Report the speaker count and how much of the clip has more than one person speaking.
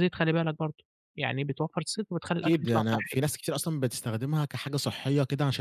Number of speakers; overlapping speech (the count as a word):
two, about 13%